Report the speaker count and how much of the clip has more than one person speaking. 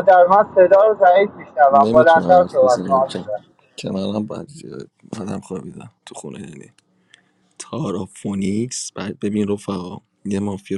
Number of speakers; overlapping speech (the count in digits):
2, about 15%